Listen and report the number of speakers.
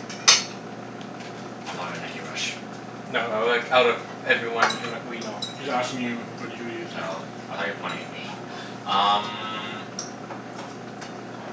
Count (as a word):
three